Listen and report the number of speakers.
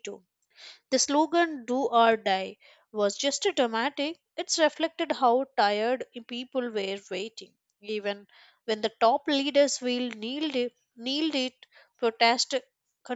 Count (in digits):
1